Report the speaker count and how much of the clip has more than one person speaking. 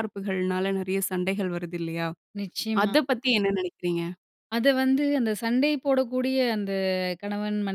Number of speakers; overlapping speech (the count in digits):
2, about 2%